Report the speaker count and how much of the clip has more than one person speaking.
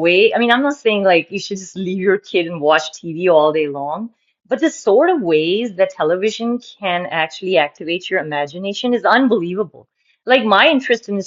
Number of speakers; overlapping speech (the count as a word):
one, no overlap